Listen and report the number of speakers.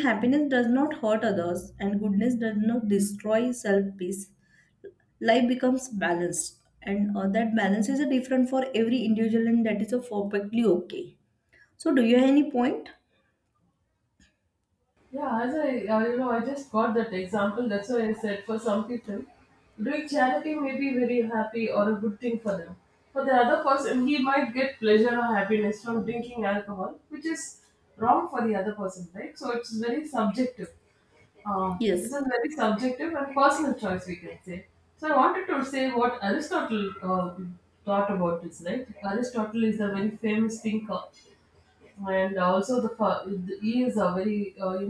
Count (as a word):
two